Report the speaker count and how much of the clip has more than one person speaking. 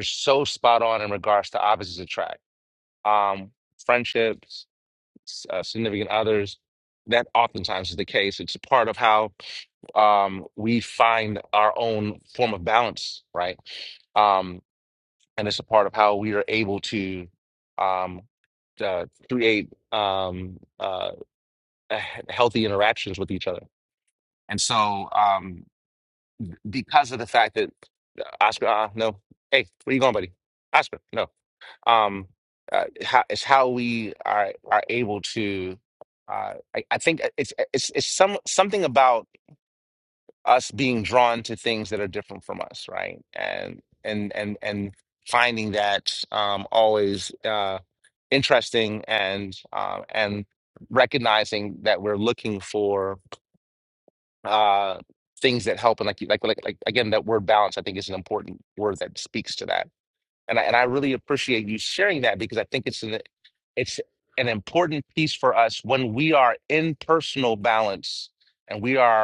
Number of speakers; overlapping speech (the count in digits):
1, no overlap